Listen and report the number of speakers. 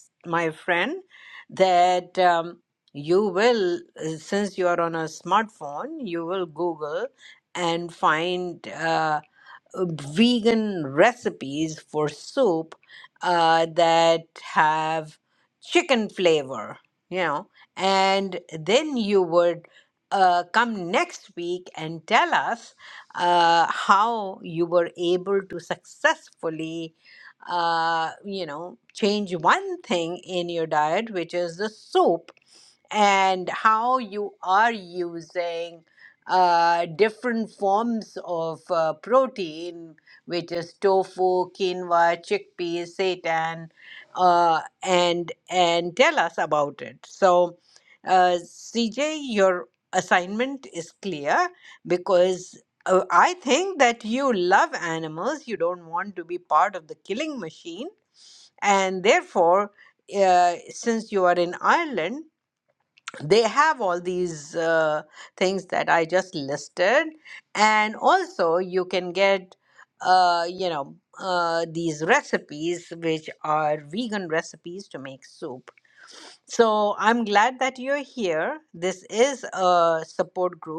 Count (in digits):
1